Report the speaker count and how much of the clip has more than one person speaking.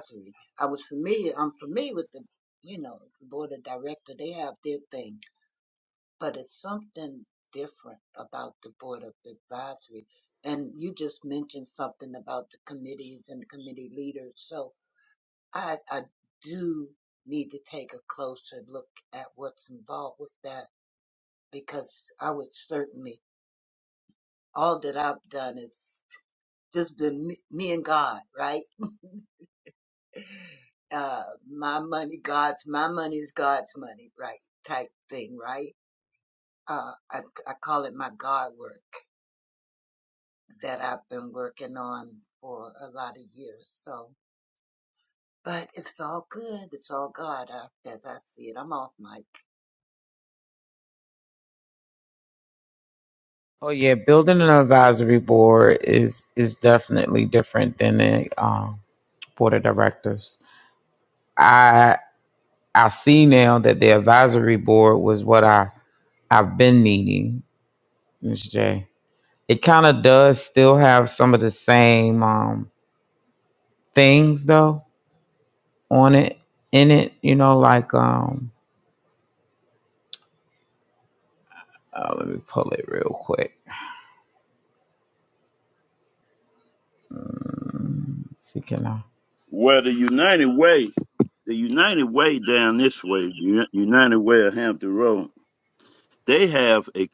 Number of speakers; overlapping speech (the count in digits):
3, no overlap